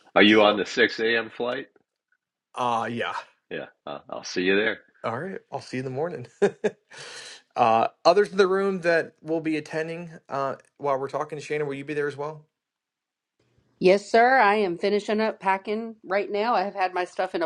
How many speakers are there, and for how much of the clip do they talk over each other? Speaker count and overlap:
3, about 1%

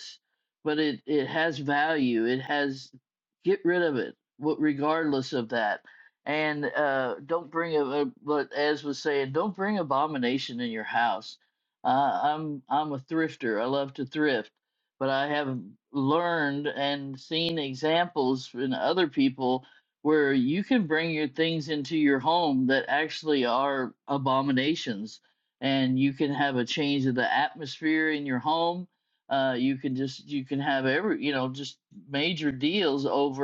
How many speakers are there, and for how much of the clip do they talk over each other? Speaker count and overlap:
1, no overlap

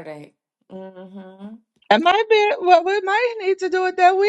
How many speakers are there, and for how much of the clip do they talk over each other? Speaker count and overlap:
2, no overlap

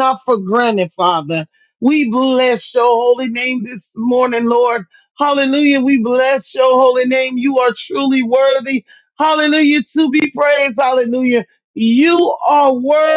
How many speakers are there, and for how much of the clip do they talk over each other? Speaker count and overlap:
1, no overlap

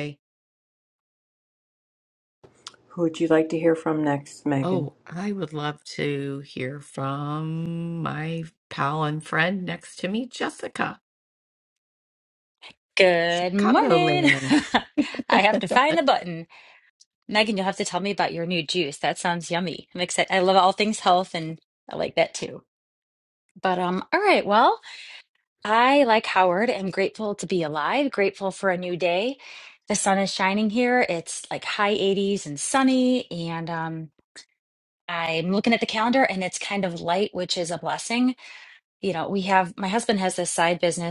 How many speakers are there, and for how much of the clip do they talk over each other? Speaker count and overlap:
3, about 3%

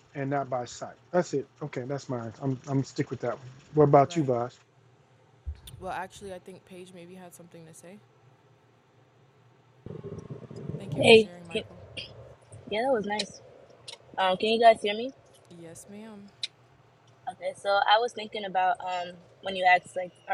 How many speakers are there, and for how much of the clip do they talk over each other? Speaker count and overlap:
3, about 4%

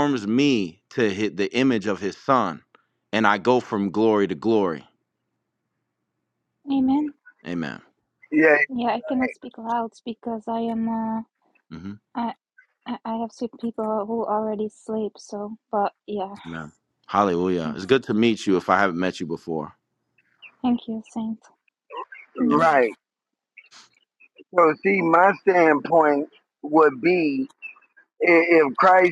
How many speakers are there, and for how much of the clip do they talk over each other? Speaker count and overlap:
3, about 2%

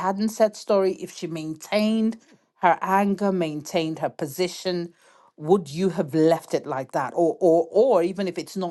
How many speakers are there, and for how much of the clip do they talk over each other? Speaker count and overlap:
1, no overlap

